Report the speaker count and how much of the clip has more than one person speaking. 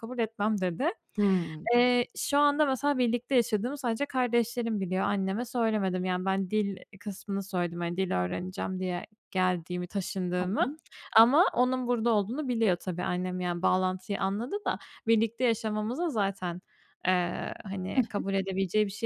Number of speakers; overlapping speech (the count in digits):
2, about 3%